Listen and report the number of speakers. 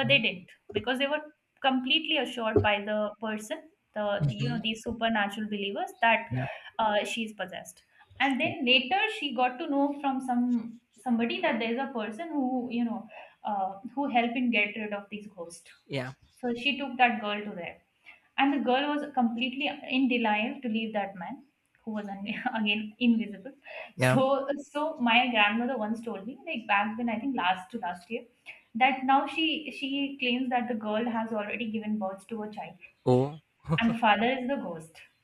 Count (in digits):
2